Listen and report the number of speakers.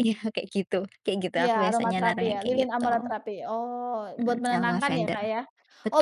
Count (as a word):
two